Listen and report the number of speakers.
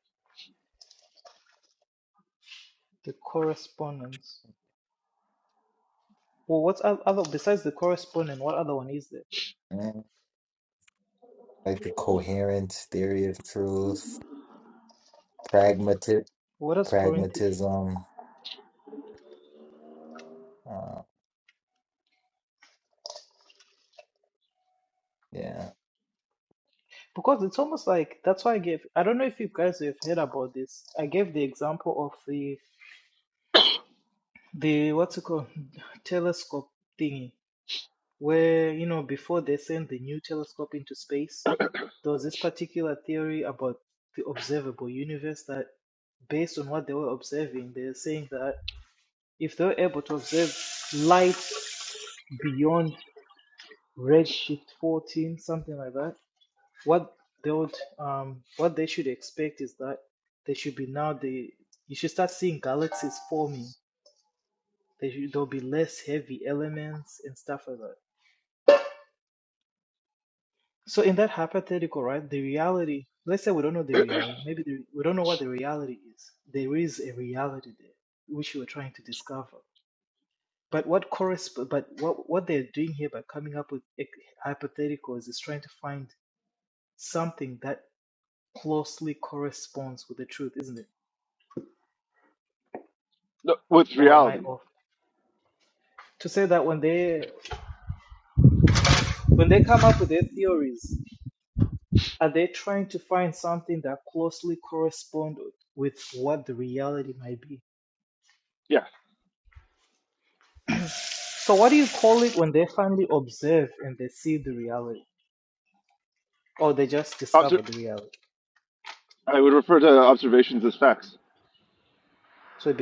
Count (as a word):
three